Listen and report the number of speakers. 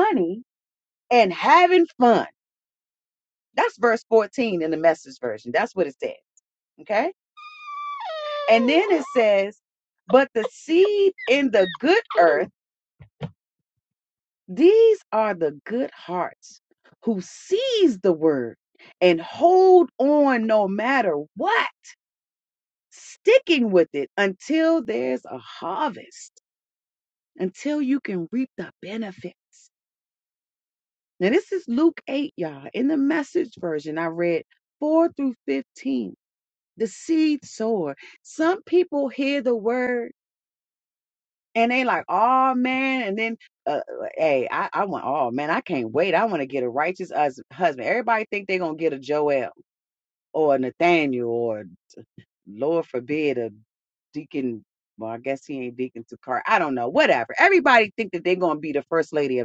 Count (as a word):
one